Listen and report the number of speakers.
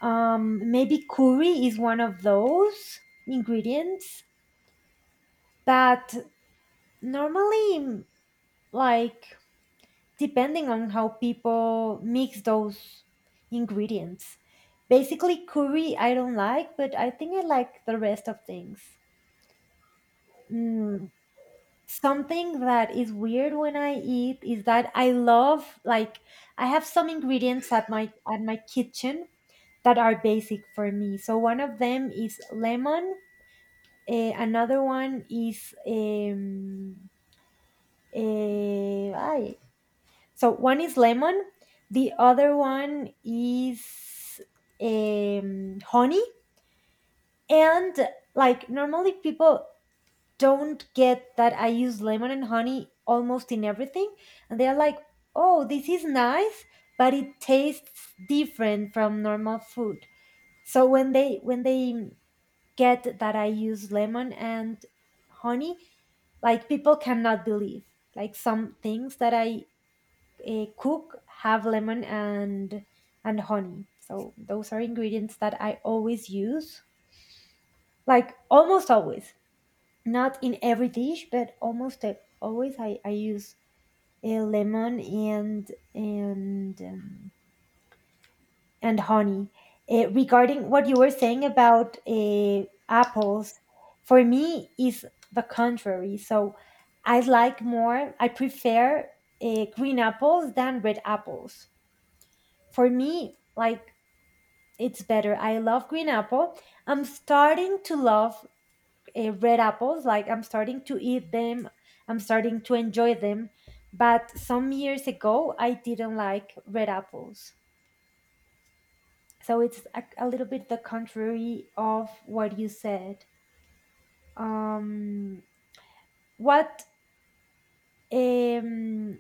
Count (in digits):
1